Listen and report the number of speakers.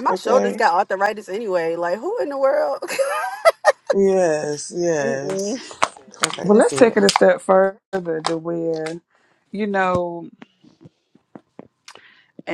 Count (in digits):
3